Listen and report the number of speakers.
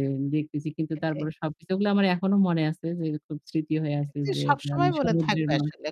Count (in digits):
2